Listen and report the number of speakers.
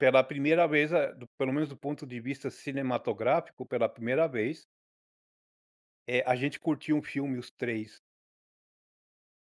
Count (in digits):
1